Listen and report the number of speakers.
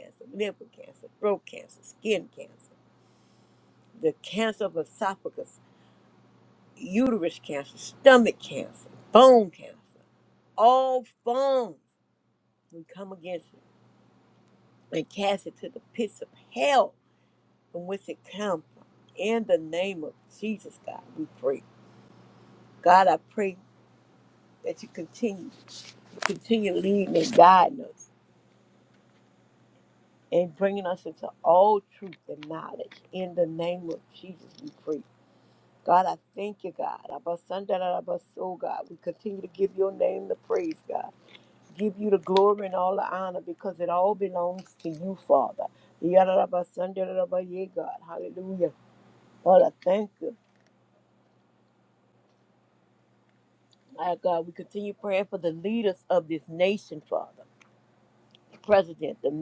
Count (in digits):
1